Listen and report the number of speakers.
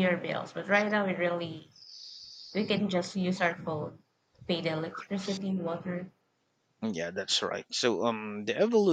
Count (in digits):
2